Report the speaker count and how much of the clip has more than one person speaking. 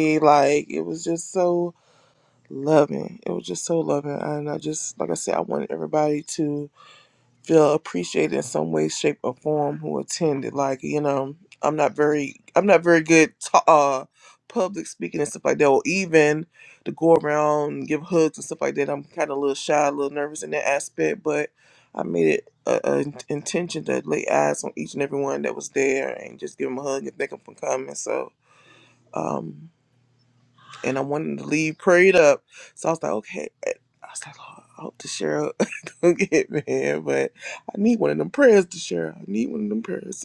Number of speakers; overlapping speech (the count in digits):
1, no overlap